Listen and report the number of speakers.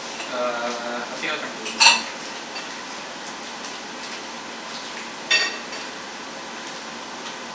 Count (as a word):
one